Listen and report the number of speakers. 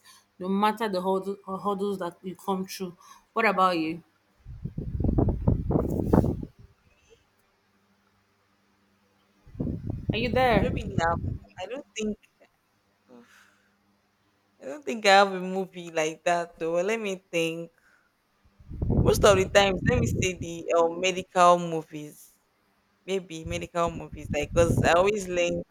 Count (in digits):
2